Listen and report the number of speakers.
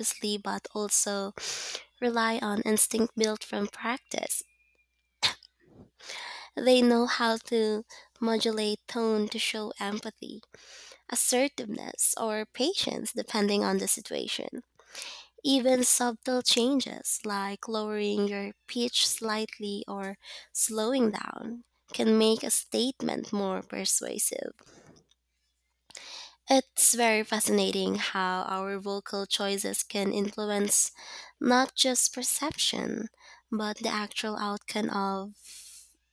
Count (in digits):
1